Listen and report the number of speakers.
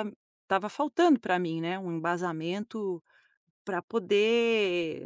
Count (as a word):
one